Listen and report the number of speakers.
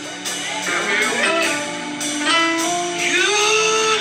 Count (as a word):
zero